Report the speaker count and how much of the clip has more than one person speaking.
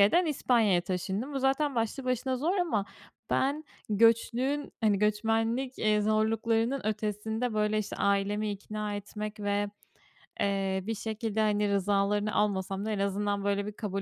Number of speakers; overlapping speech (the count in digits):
1, no overlap